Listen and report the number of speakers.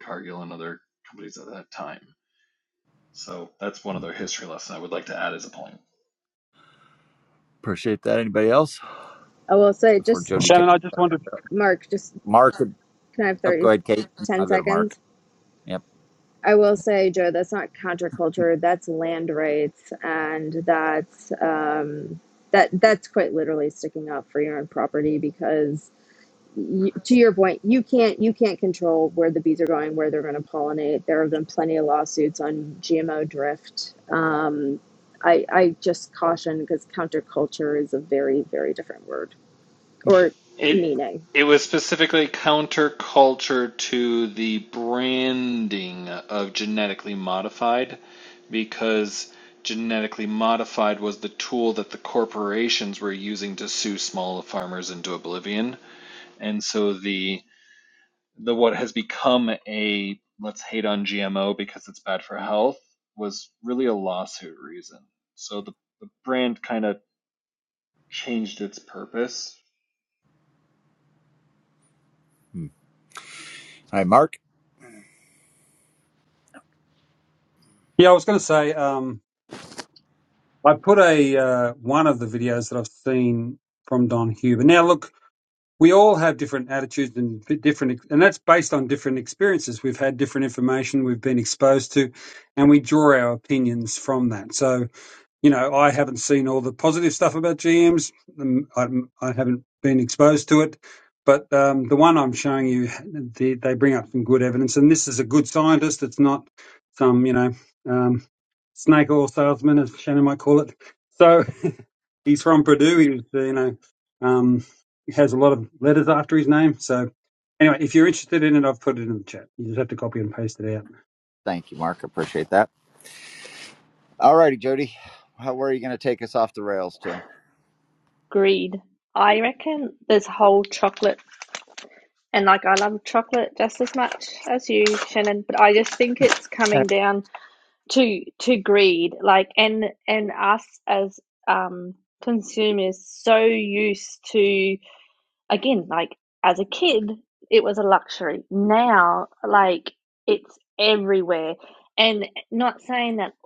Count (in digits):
5